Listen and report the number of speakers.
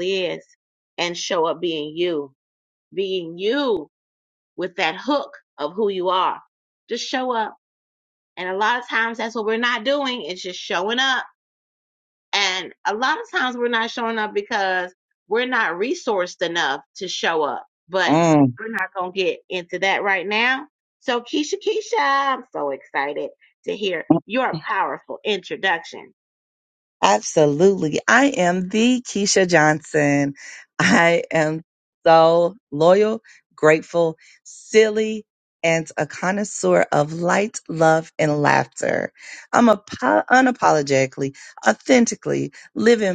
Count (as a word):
two